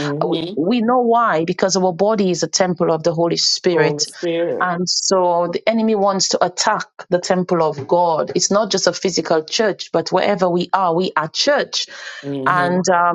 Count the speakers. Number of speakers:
2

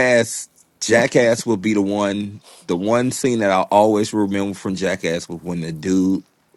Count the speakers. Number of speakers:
1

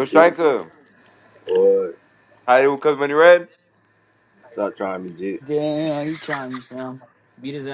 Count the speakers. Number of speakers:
3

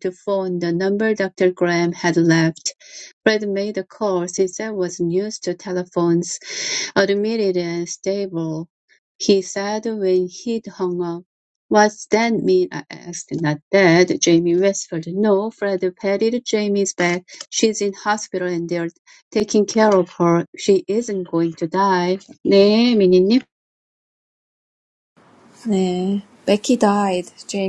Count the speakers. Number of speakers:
2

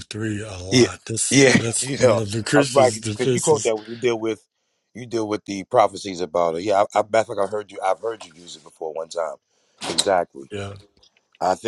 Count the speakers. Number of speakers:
2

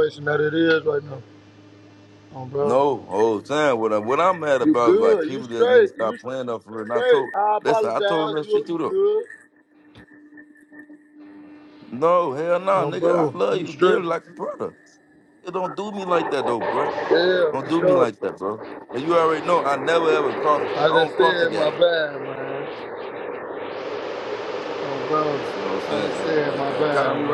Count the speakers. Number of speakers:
2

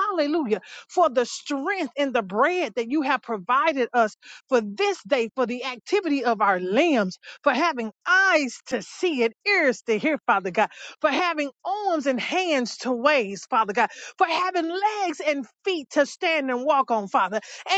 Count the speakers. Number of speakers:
1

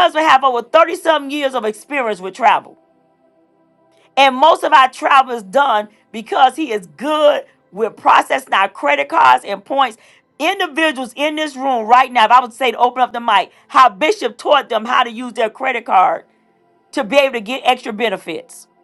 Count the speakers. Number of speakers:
1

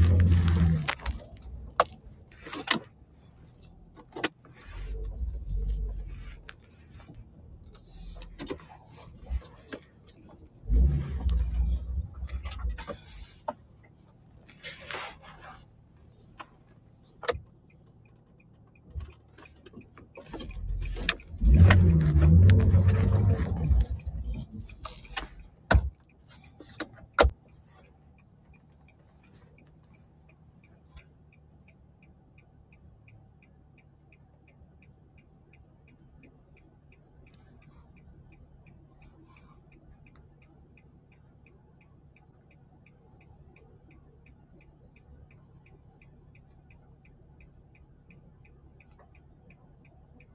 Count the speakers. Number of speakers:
0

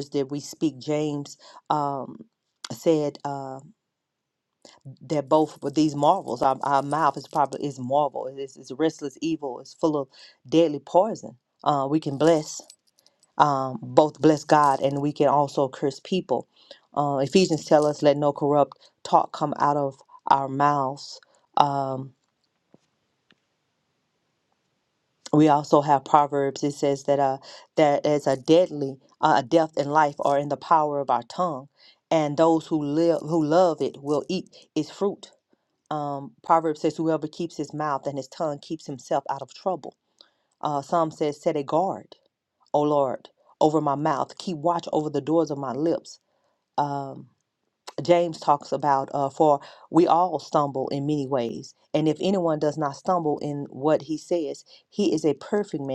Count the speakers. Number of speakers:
1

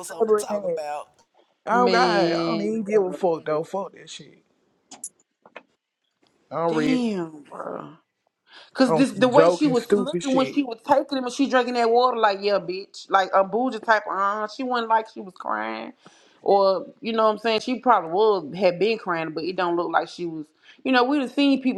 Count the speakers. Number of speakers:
3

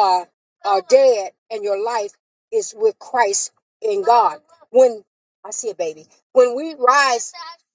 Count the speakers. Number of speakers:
1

